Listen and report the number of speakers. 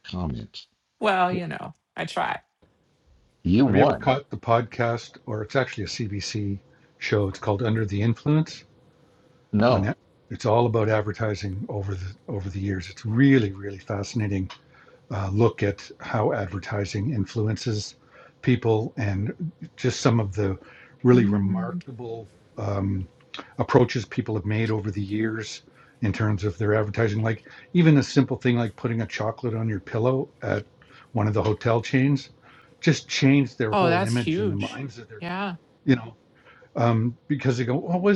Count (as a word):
three